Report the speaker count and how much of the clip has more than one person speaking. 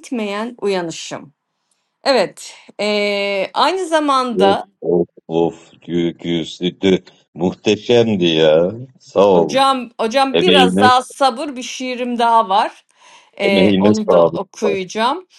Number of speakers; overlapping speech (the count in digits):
2, about 14%